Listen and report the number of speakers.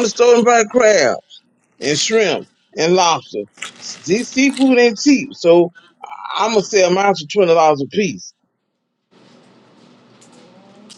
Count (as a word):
one